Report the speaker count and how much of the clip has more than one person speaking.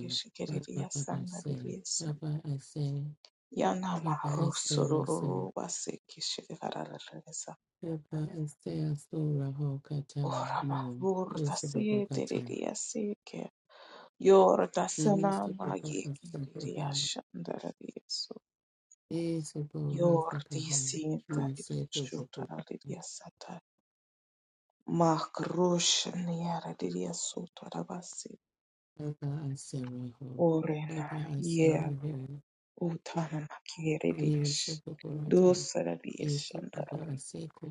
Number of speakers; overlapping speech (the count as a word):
two, about 29%